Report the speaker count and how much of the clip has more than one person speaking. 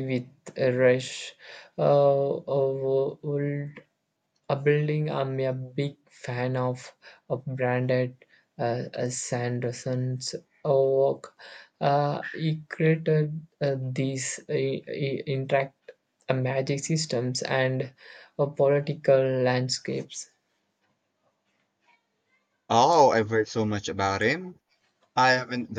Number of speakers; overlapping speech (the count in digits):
2, no overlap